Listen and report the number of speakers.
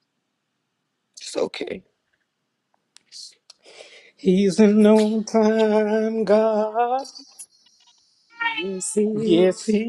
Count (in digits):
2